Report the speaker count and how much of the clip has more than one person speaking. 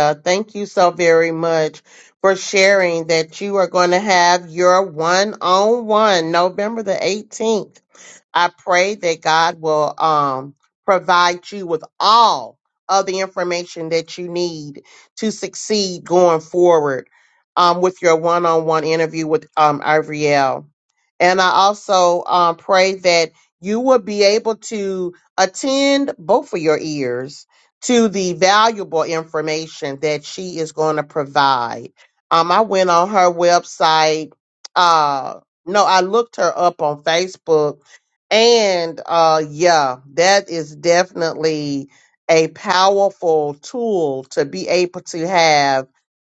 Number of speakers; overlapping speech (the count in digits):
1, no overlap